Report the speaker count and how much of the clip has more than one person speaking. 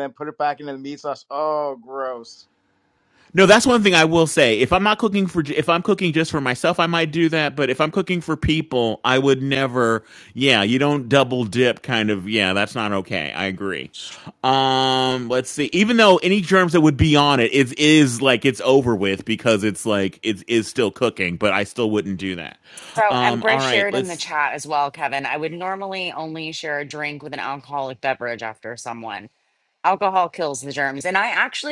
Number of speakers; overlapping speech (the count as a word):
three, about 3%